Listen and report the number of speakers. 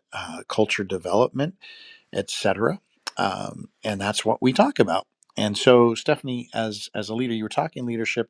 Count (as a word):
one